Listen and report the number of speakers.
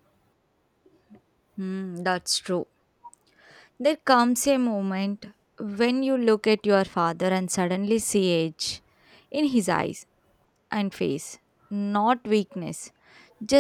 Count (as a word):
one